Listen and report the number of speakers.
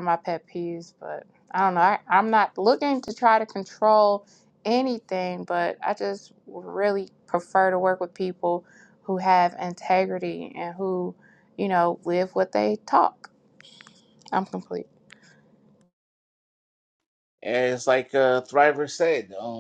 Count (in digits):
2